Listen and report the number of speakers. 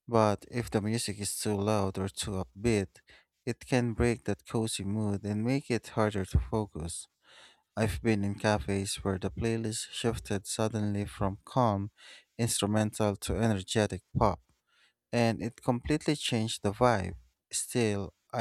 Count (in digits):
1